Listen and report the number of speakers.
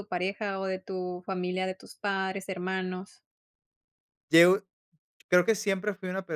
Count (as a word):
two